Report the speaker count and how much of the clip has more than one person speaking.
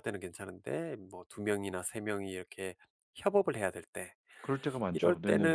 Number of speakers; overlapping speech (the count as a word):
two, about 11%